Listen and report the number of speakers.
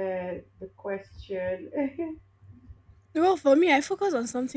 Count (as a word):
two